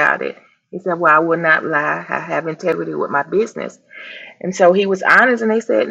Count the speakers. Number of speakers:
one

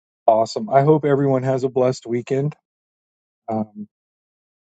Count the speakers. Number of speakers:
one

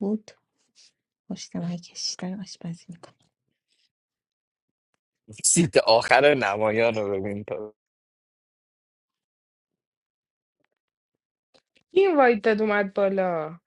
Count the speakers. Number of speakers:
three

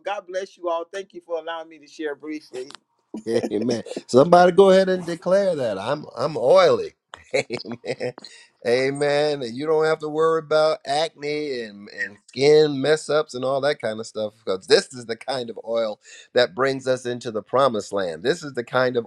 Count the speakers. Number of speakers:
two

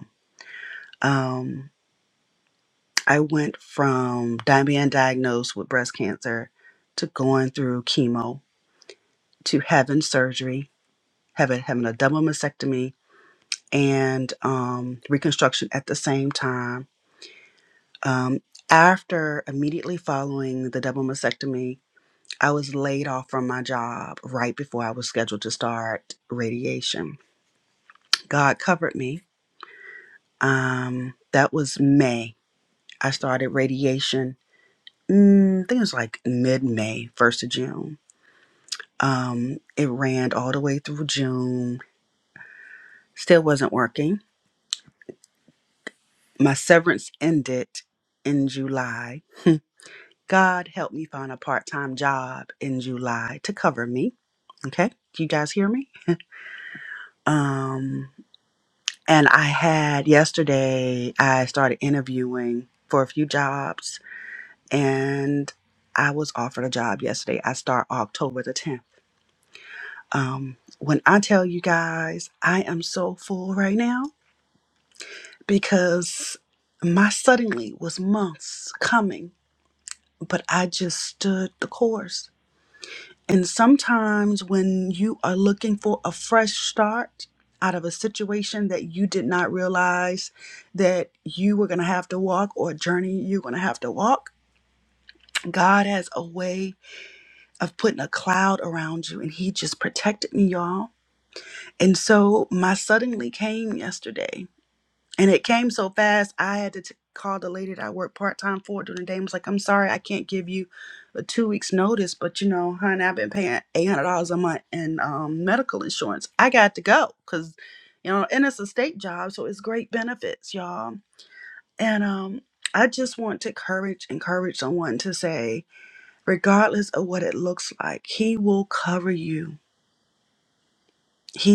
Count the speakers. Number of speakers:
one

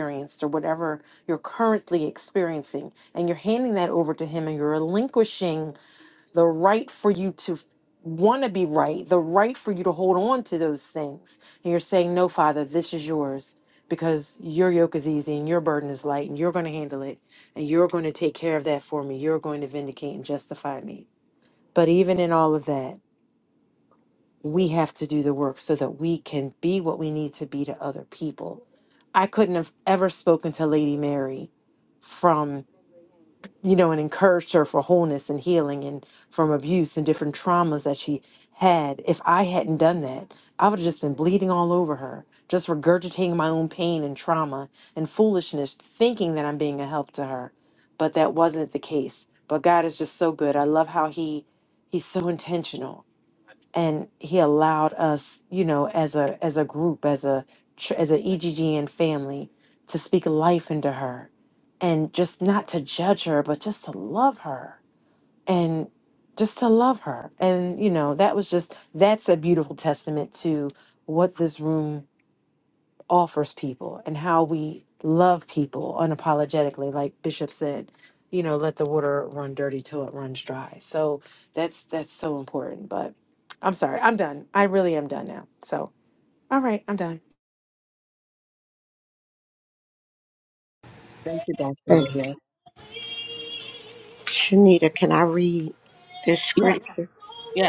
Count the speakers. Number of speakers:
three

